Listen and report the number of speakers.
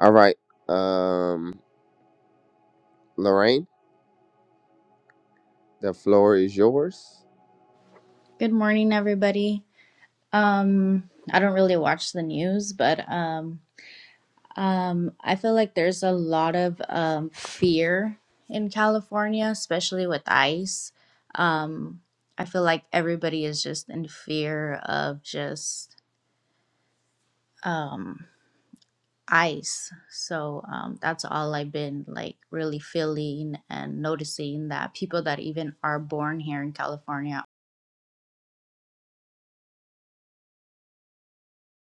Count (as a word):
two